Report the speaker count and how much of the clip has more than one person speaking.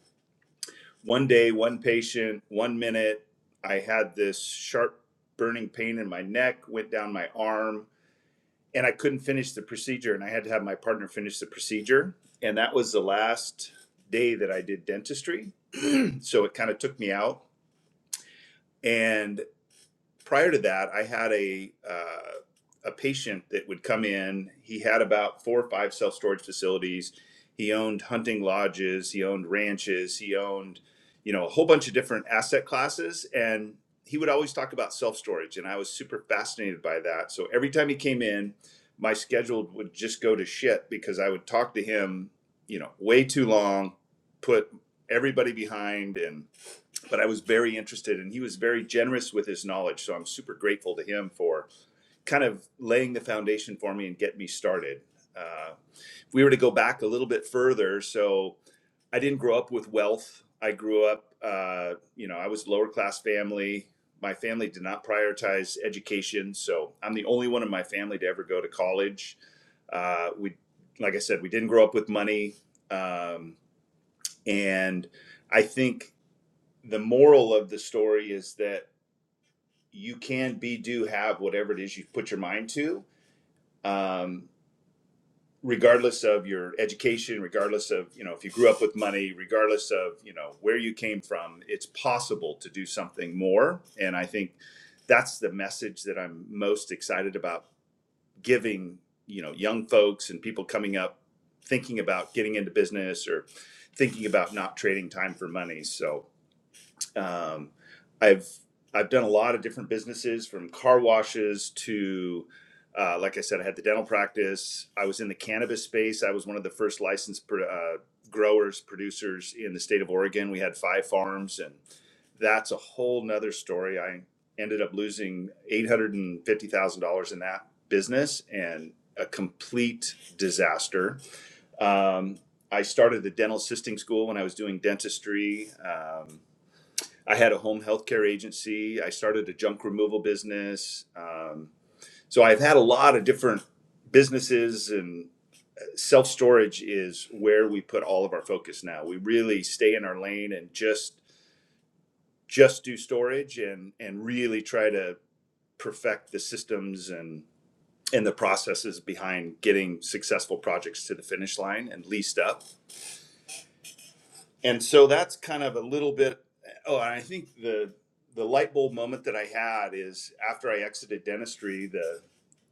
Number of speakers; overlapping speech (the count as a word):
one, no overlap